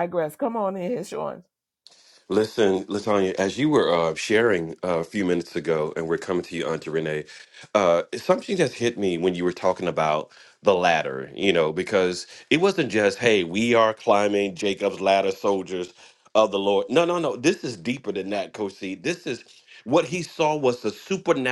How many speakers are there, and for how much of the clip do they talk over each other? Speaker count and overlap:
2, no overlap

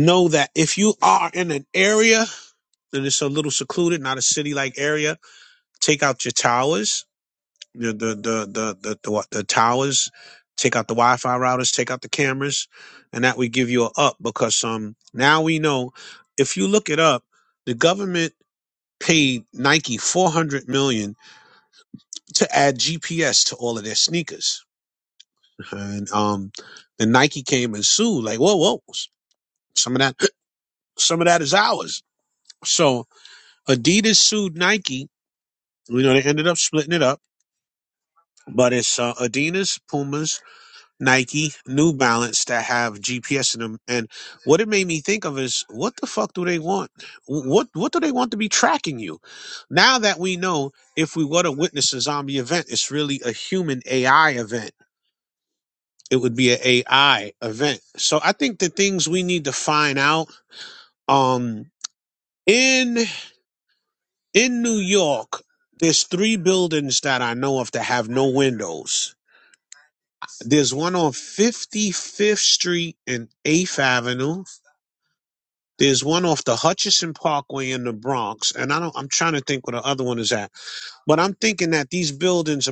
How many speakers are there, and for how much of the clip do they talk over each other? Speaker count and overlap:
1, no overlap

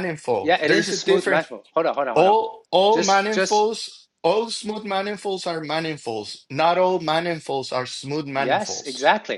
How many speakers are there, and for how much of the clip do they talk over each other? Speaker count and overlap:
2, about 28%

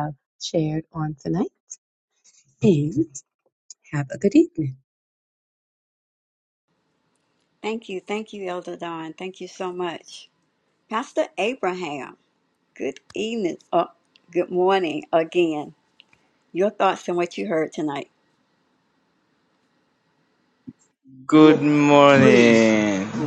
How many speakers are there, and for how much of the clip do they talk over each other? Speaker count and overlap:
3, no overlap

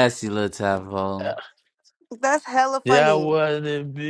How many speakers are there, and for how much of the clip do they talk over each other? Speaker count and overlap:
3, about 12%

